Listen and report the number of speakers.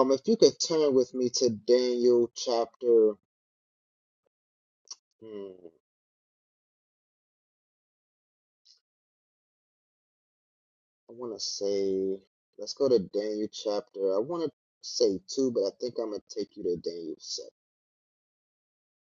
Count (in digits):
1